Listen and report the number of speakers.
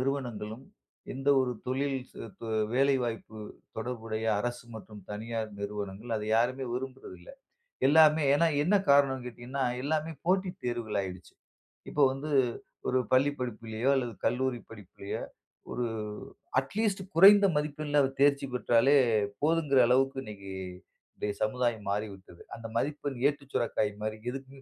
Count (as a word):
one